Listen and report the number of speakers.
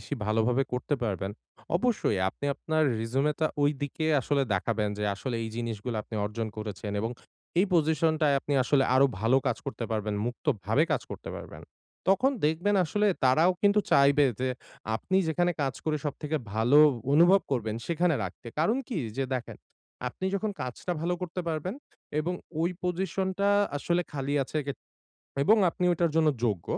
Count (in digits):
1